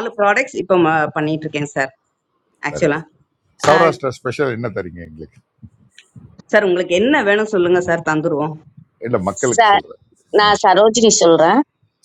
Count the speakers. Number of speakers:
3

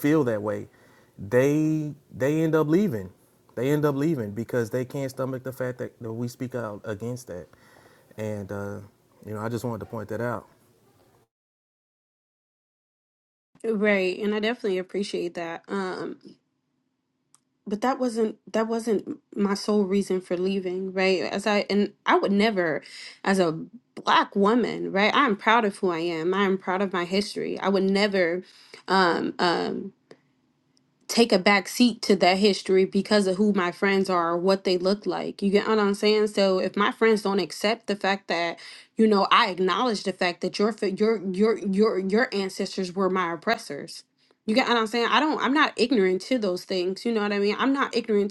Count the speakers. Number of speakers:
2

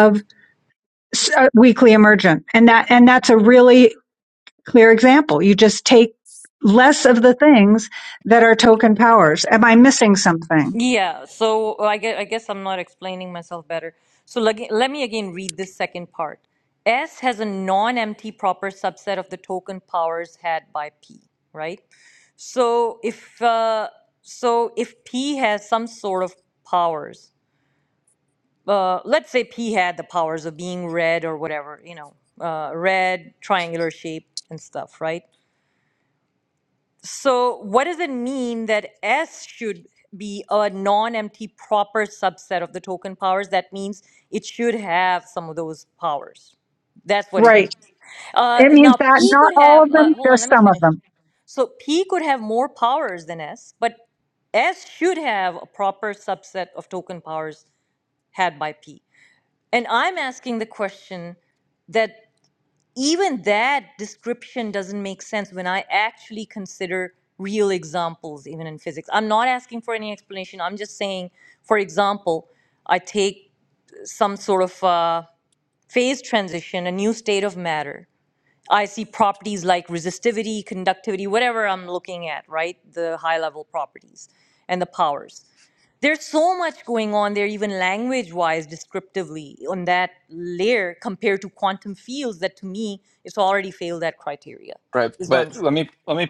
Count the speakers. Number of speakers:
3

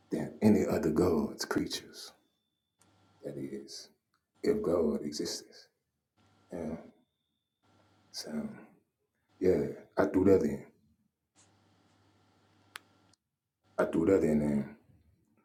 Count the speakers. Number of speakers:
1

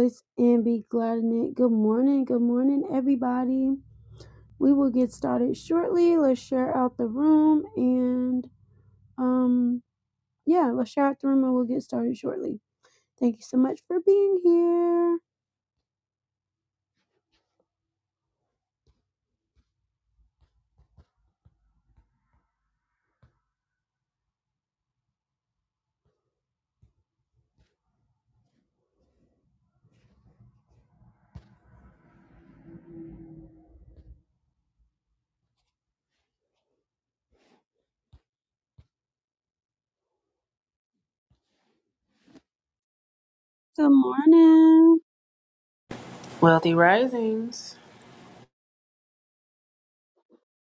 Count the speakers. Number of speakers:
2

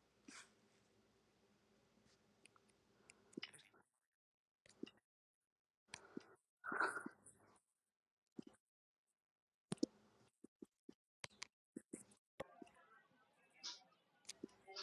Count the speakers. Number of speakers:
0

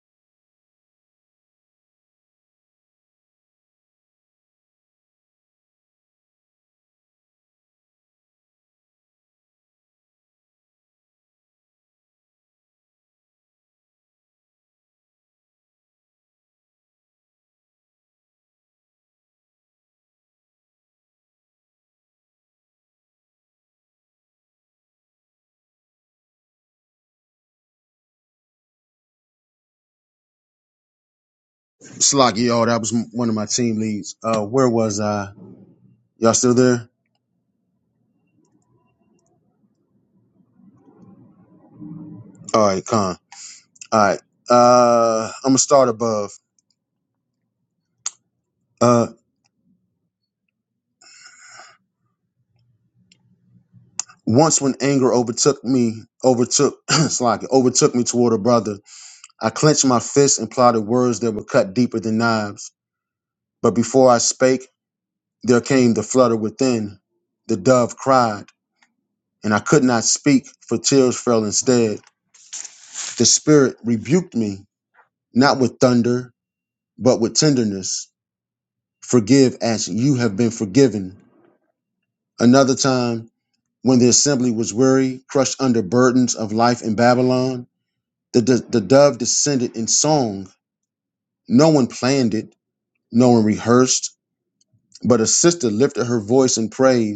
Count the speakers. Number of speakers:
1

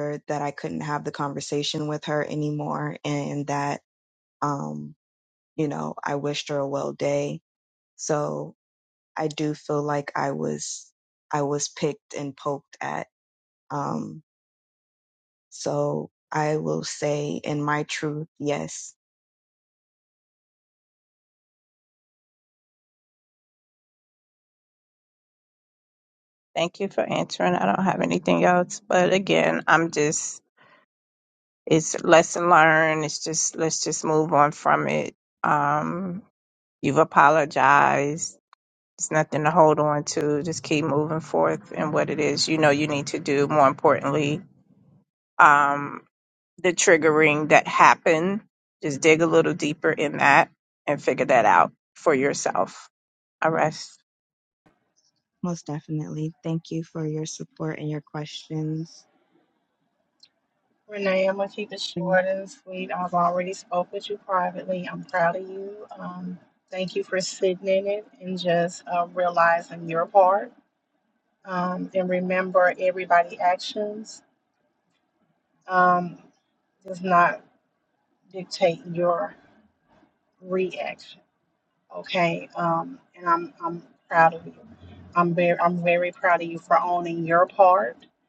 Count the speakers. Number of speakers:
3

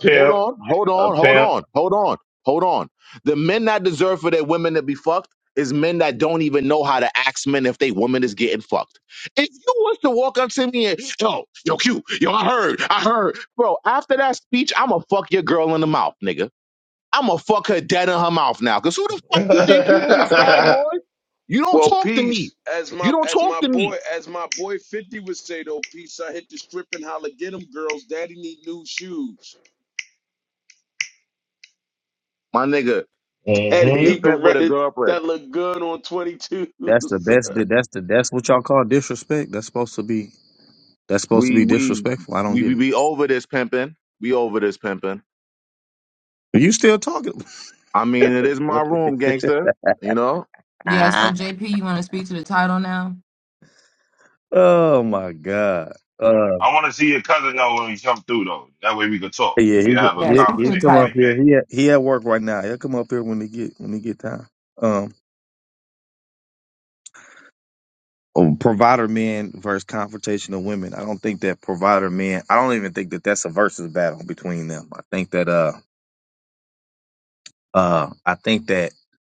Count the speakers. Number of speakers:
5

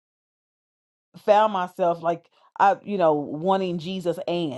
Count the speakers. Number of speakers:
1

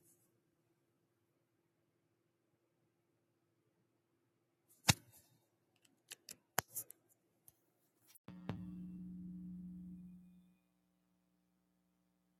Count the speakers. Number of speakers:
0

